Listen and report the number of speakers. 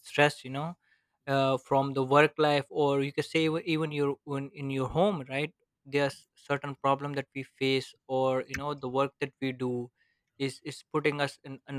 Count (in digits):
1